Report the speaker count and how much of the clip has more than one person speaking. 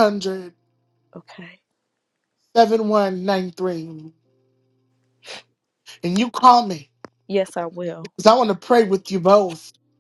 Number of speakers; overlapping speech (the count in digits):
2, no overlap